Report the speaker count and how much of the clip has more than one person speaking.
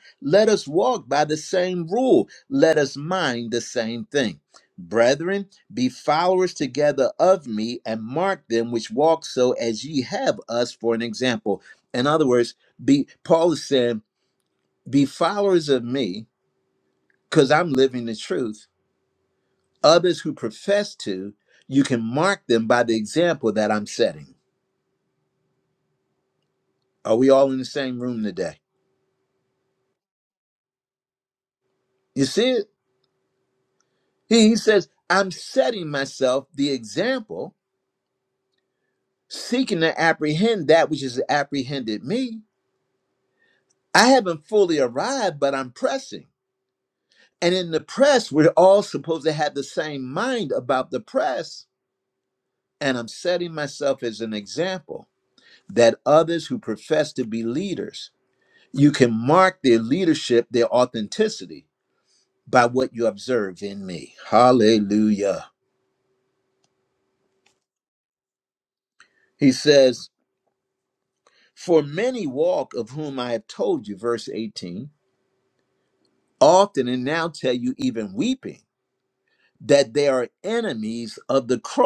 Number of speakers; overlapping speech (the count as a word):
one, no overlap